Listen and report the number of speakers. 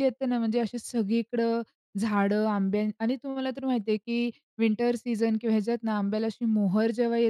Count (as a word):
one